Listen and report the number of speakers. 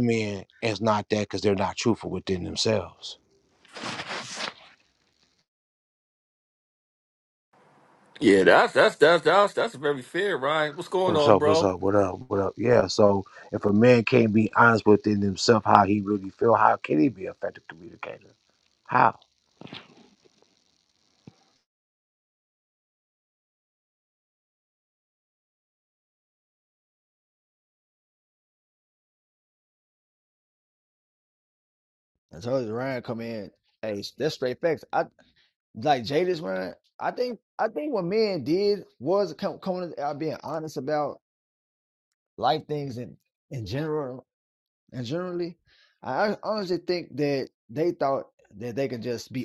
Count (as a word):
three